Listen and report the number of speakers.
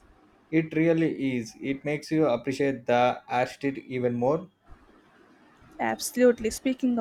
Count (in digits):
2